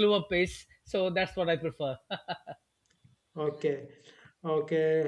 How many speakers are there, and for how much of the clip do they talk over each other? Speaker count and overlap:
2, no overlap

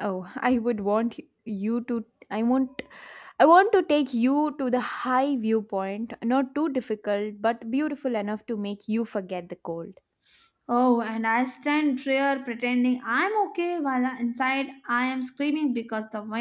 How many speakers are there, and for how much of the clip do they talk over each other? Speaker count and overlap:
2, no overlap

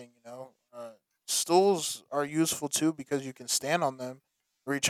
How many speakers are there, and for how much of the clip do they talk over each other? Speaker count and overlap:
1, no overlap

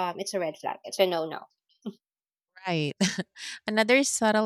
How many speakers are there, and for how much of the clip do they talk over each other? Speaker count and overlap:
2, no overlap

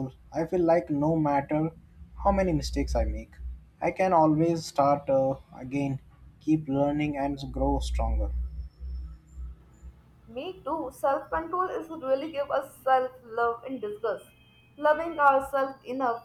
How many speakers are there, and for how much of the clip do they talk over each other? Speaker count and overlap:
2, no overlap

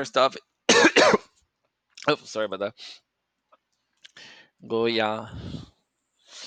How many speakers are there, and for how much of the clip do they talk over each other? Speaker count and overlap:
1, no overlap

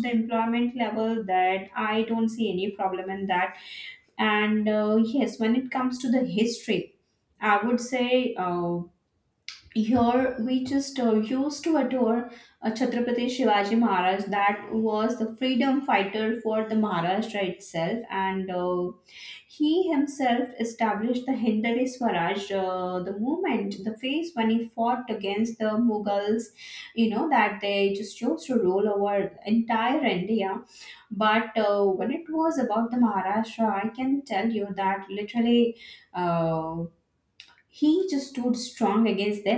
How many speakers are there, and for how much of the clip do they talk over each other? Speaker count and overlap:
1, no overlap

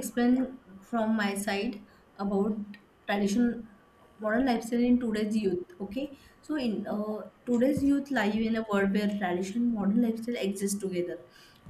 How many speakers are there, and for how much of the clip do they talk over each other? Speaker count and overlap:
1, no overlap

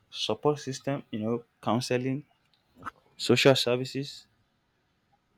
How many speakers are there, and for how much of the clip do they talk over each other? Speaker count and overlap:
1, no overlap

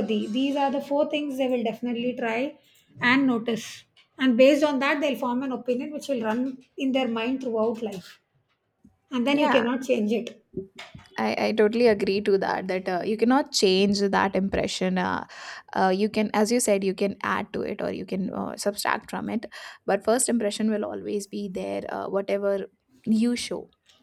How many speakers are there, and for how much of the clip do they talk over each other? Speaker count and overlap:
2, about 2%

